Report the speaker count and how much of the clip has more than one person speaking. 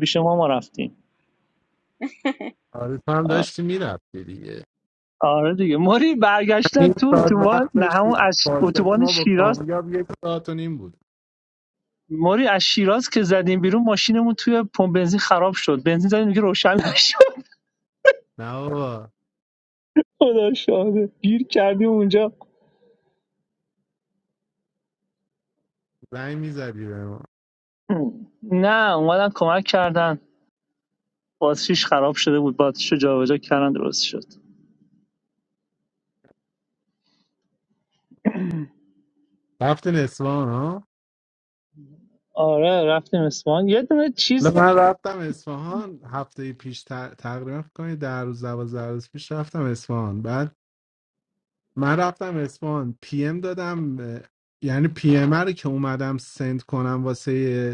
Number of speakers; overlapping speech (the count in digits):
2, about 5%